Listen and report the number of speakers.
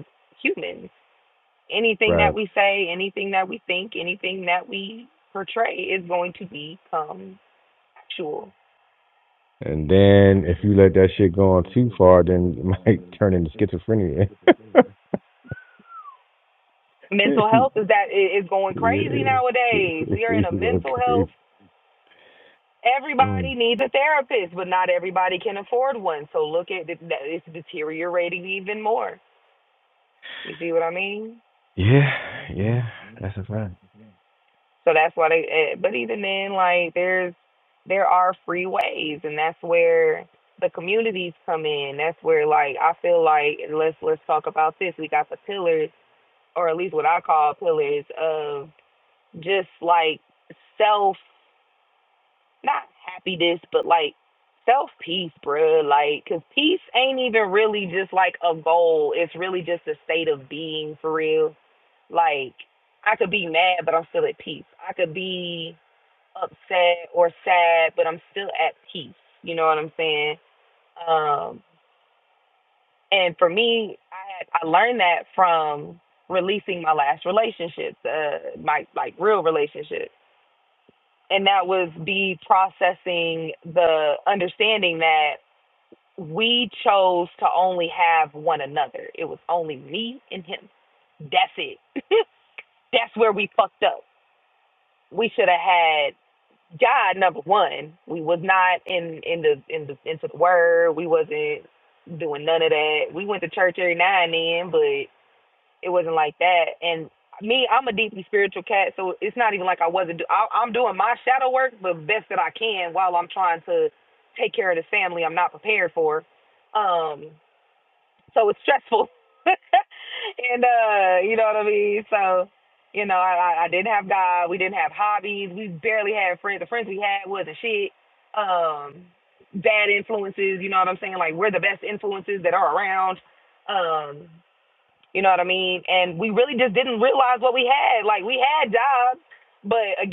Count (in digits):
2